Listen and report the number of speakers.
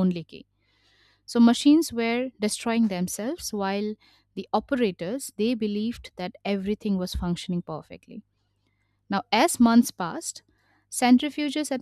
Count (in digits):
1